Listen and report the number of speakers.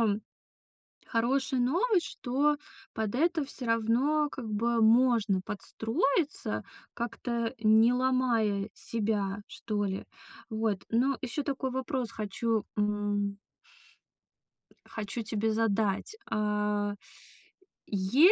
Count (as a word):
one